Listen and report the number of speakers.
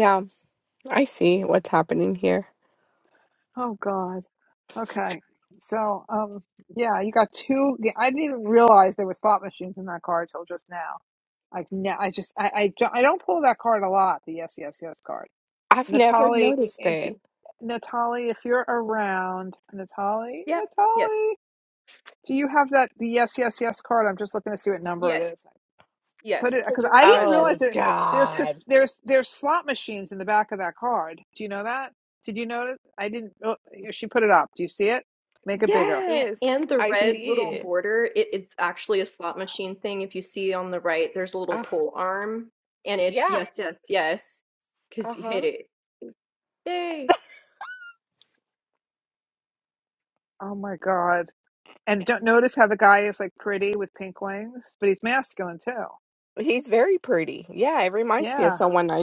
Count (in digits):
3